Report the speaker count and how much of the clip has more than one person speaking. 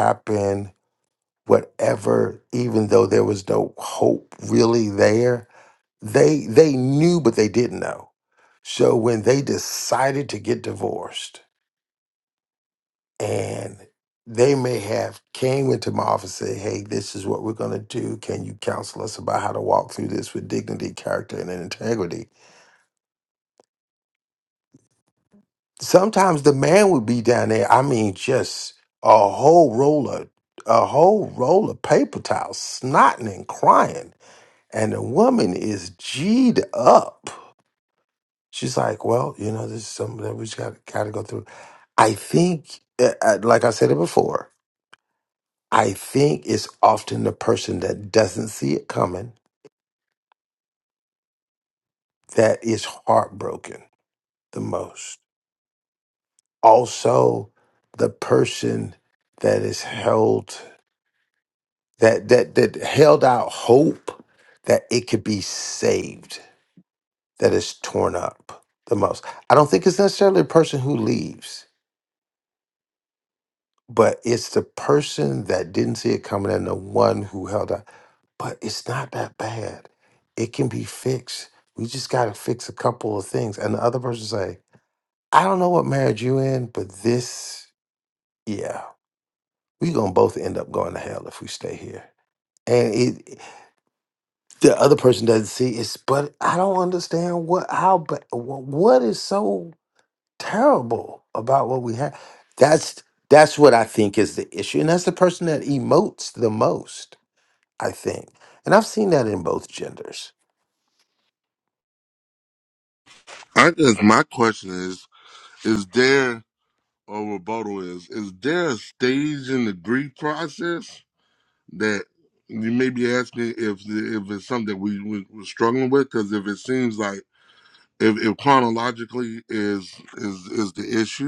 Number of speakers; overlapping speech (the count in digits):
2, no overlap